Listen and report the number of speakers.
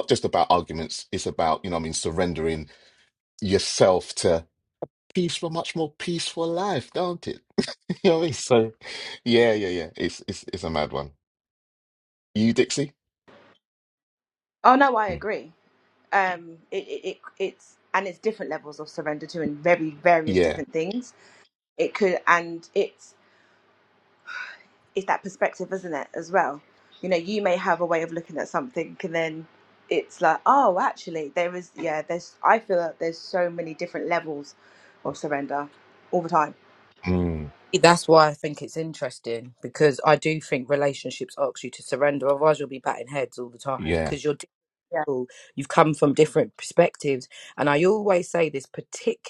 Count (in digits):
3